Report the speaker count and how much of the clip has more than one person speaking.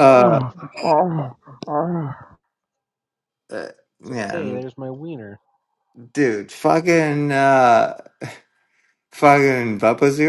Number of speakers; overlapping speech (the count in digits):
3, about 9%